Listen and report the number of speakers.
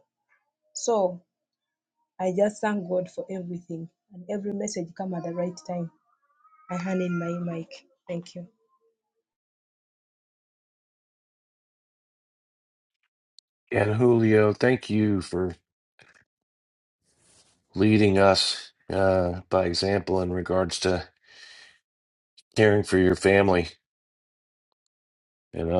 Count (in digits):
2